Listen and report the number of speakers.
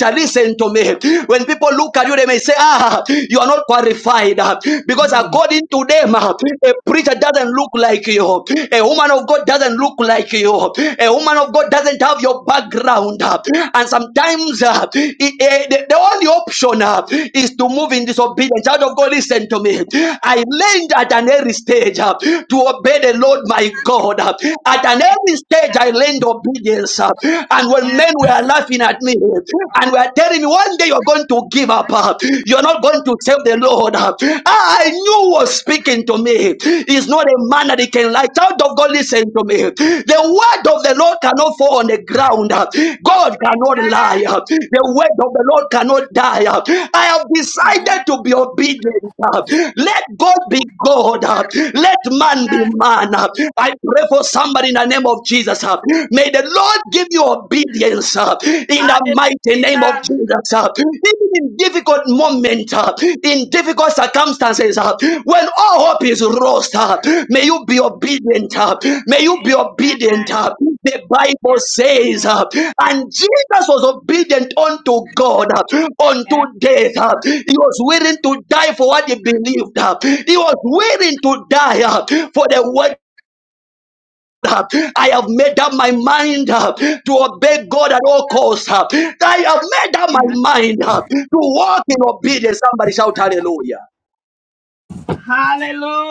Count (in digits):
2